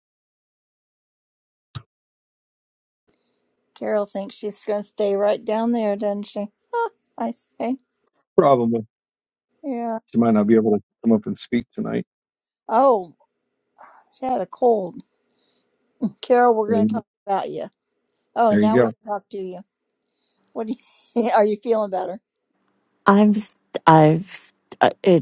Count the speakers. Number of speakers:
3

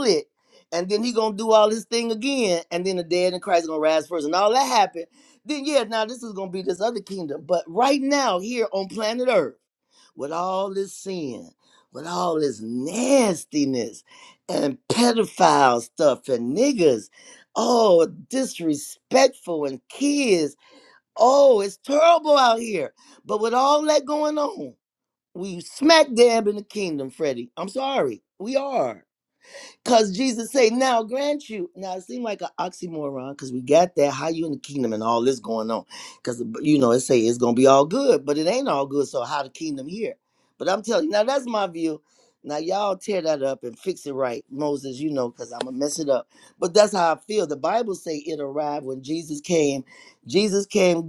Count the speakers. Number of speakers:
1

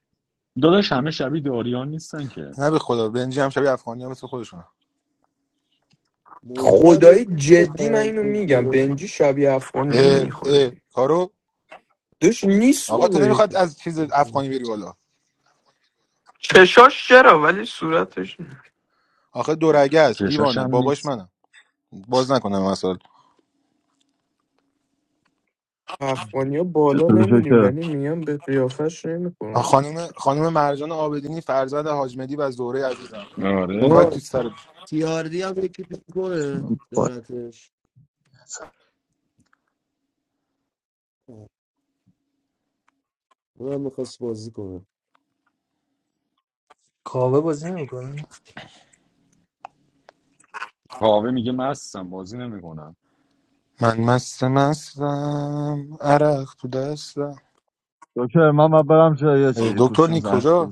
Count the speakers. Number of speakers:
6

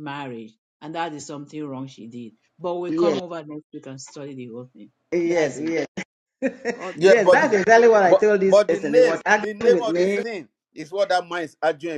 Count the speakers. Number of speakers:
3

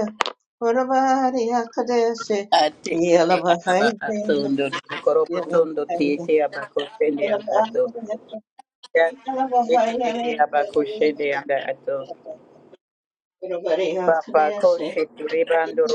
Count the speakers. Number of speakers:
2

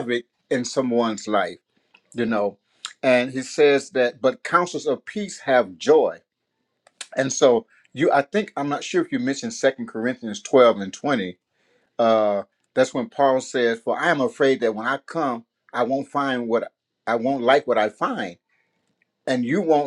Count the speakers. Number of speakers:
1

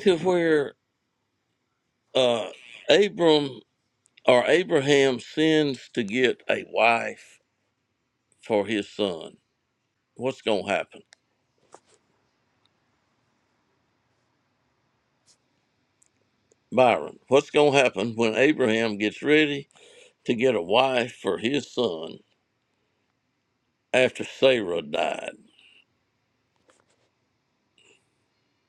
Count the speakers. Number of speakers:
1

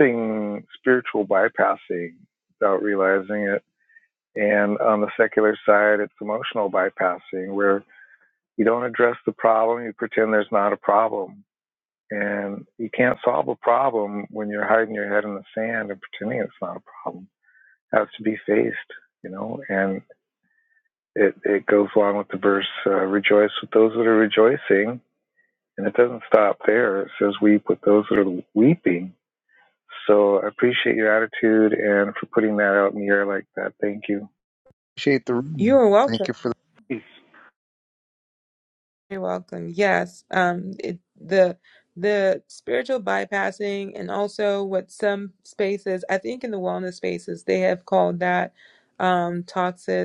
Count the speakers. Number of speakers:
2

